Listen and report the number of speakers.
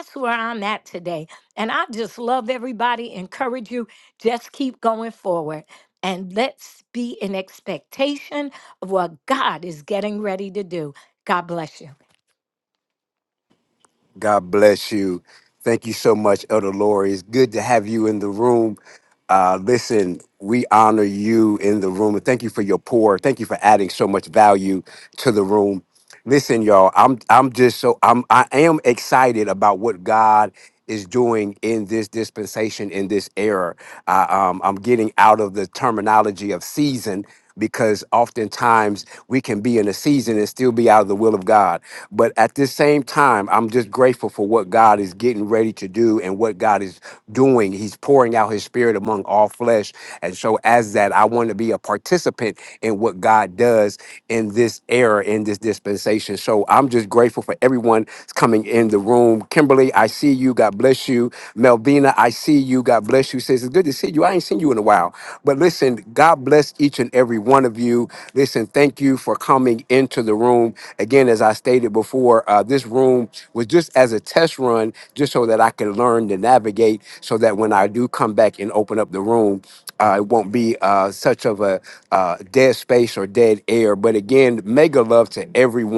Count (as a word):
two